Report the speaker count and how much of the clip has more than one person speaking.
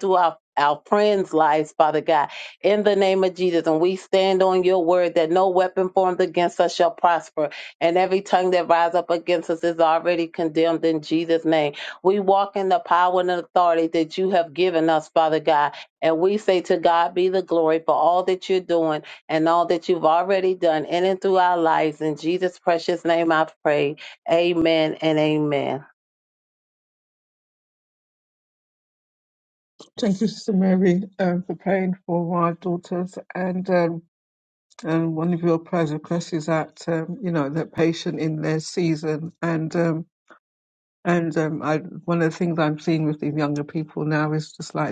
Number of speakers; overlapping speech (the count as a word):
two, no overlap